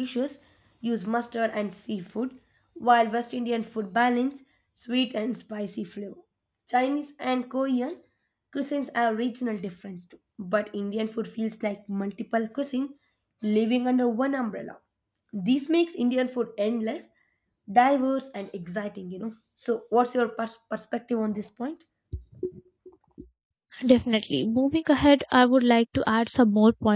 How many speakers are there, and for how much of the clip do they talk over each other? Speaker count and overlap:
two, no overlap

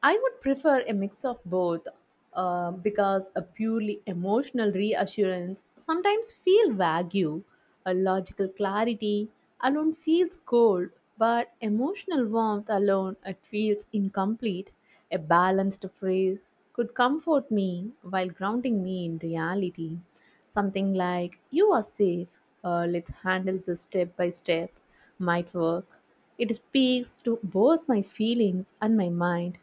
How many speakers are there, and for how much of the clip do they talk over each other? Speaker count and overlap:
one, no overlap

